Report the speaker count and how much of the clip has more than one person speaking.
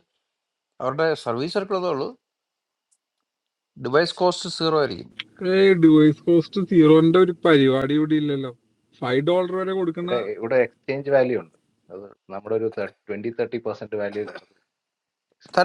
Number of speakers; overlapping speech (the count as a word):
three, about 1%